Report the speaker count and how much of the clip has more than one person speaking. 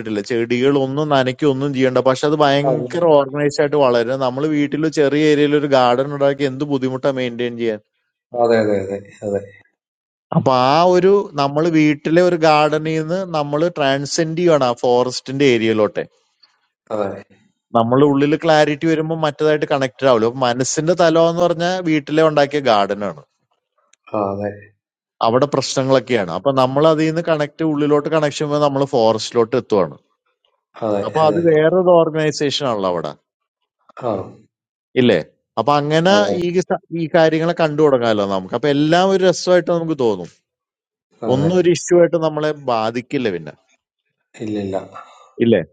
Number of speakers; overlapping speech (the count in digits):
2, about 3%